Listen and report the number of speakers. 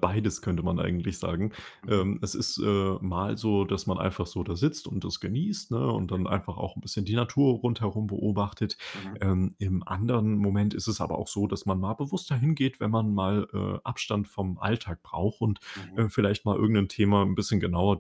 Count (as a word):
two